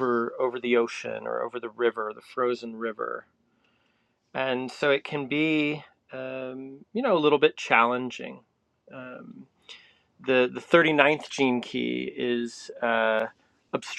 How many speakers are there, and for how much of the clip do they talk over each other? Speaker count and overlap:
1, no overlap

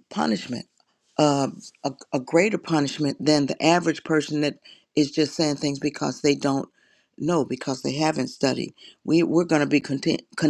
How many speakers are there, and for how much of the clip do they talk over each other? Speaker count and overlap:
1, no overlap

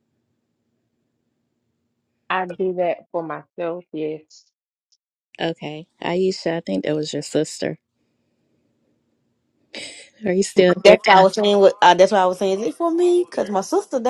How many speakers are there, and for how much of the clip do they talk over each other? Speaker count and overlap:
3, about 1%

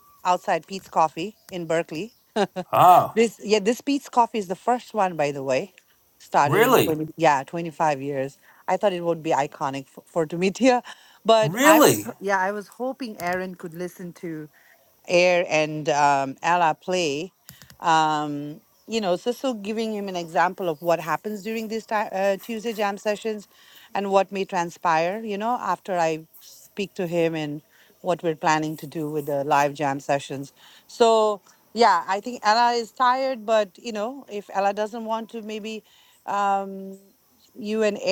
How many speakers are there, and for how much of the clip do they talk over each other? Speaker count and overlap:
2, about 3%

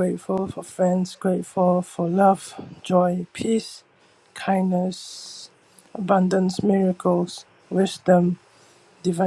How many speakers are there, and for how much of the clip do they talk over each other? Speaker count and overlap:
1, no overlap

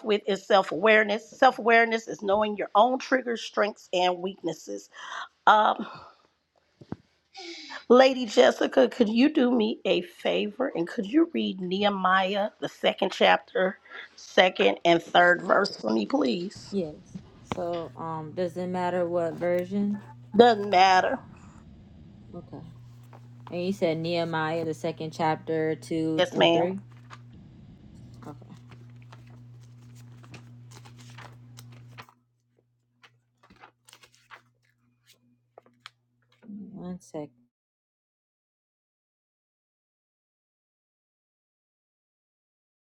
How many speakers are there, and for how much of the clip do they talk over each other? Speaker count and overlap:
2, about 1%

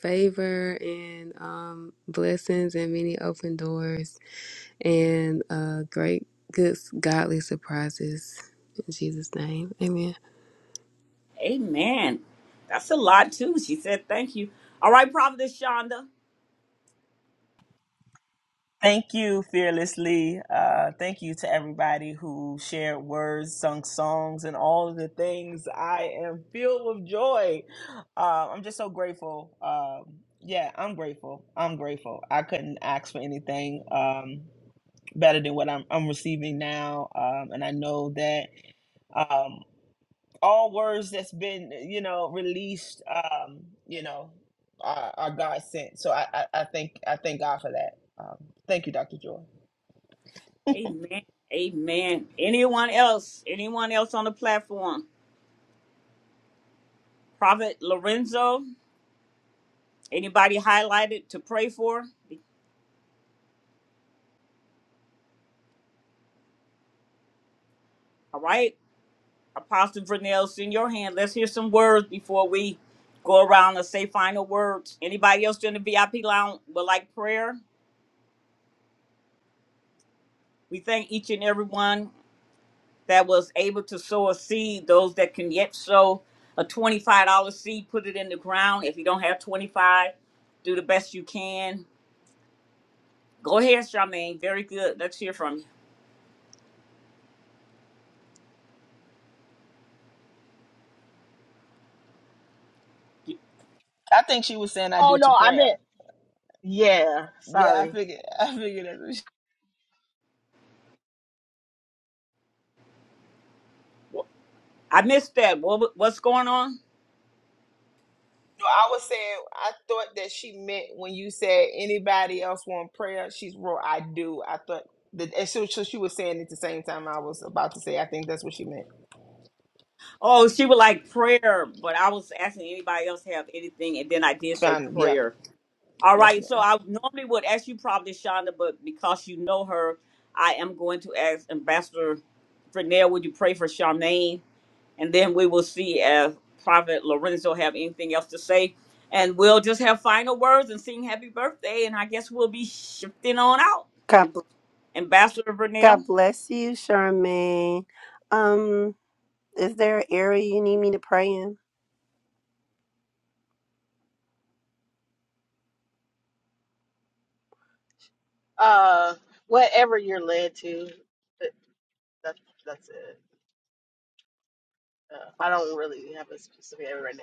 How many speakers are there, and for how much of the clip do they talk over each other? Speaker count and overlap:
5, about 1%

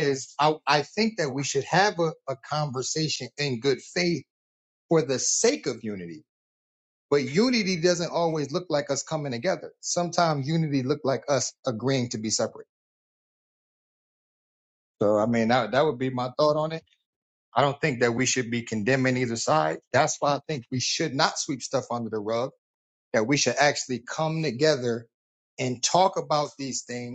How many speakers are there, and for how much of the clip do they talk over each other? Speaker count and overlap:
1, no overlap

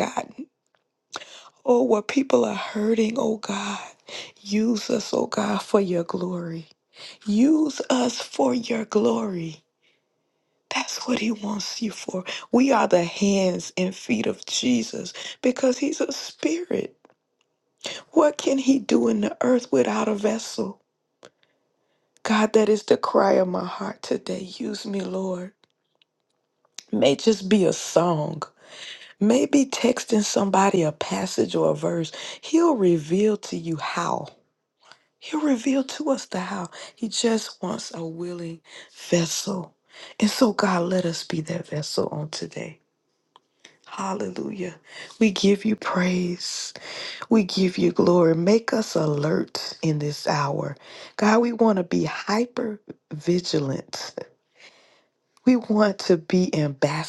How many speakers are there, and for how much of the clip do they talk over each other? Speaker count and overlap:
1, no overlap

